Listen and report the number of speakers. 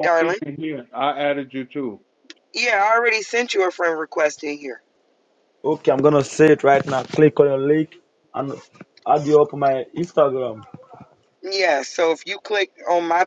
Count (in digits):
3